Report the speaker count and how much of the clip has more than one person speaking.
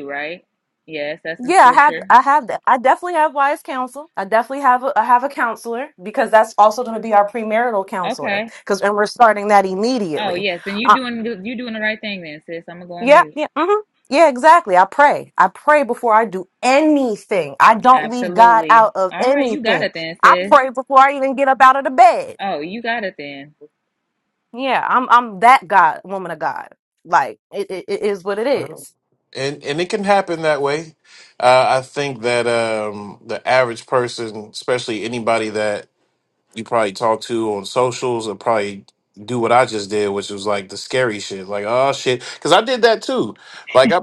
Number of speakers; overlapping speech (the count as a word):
three, about 9%